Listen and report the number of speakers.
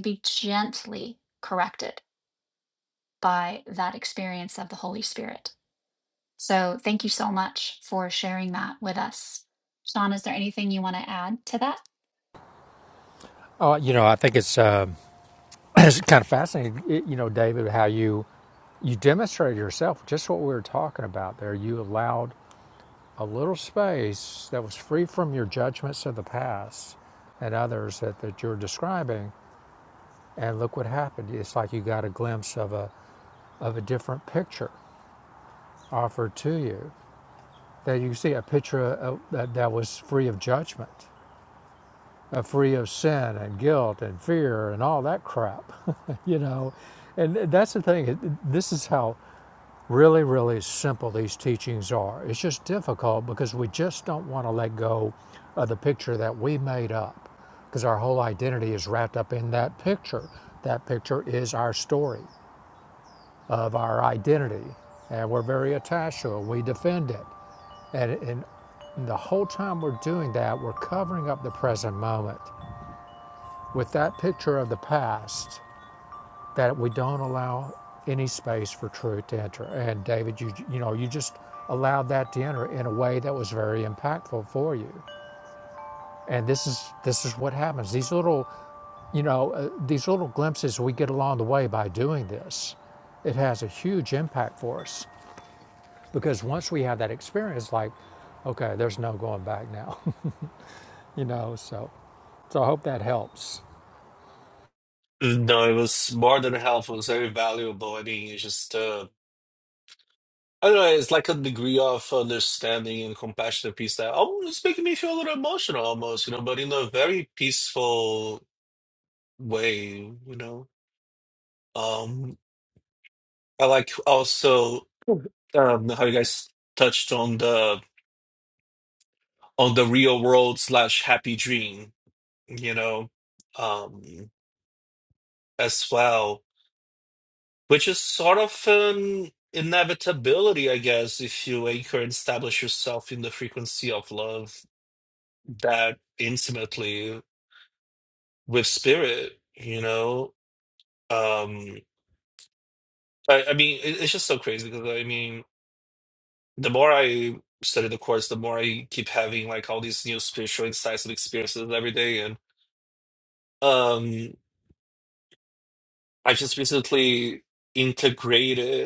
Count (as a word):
three